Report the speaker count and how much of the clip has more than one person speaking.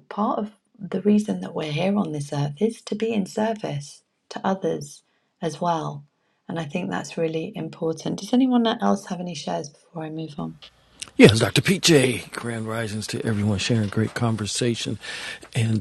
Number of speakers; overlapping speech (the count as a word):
two, no overlap